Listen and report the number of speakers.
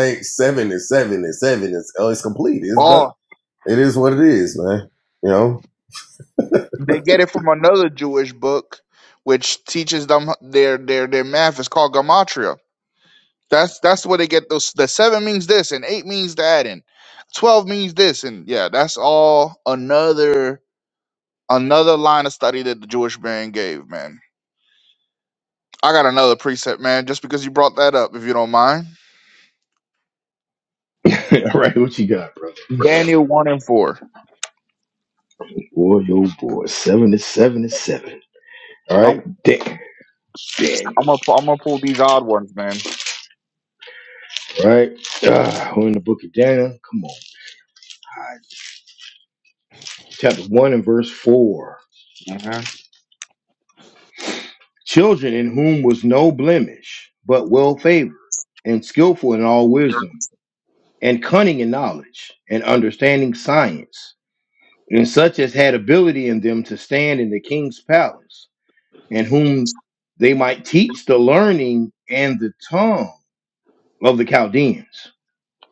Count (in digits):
3